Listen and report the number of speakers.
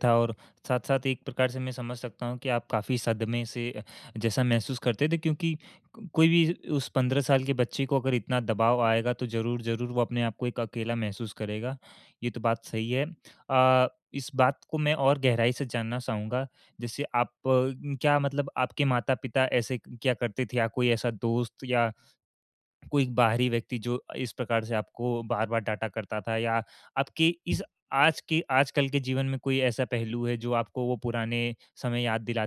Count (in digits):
1